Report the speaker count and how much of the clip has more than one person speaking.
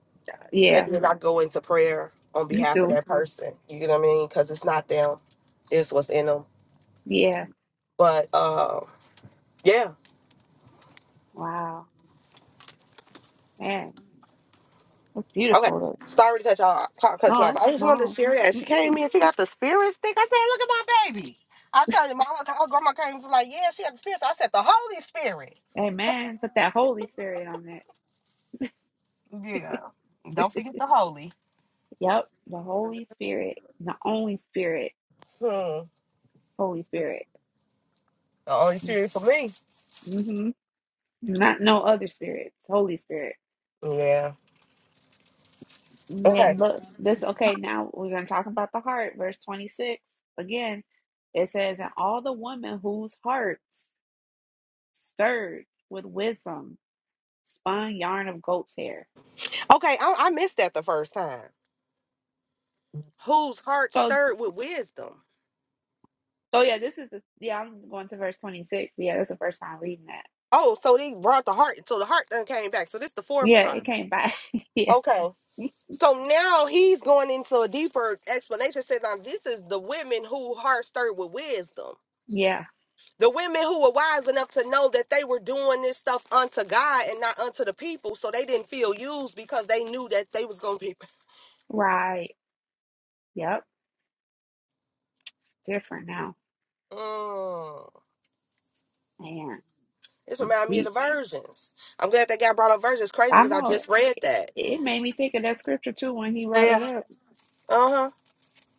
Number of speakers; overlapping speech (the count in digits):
2, about 4%